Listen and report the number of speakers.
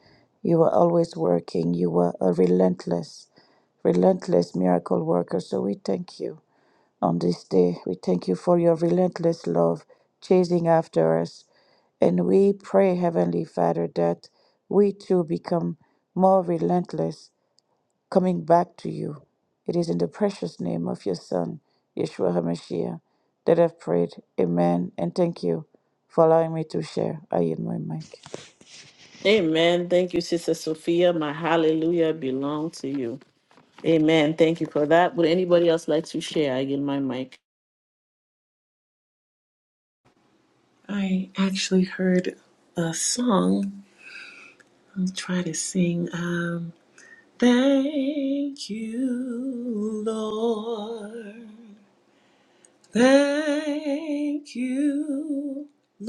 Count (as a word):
three